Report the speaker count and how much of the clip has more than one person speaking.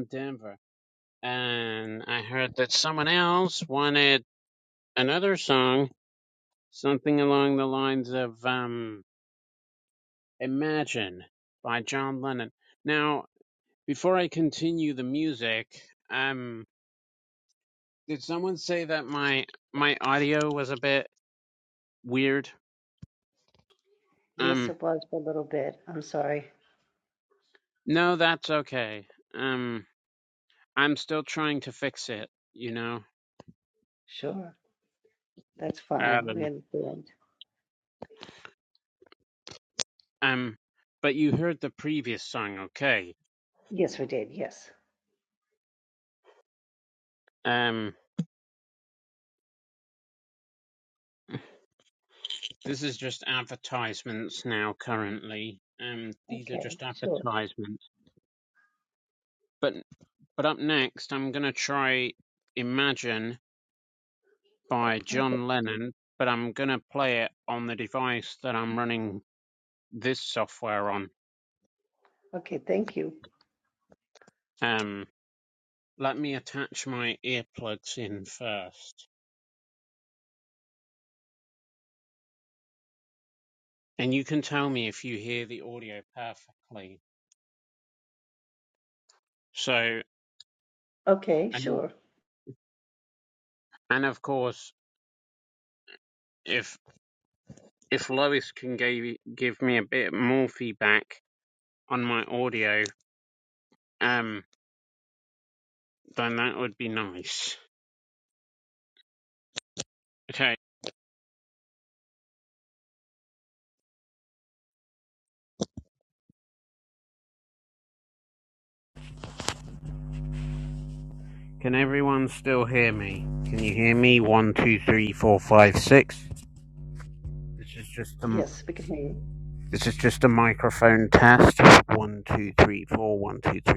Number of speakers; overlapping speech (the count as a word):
two, about 2%